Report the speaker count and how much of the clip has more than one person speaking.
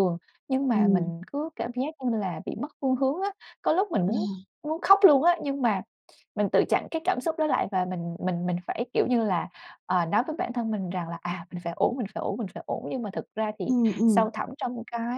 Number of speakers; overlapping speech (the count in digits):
2, about 4%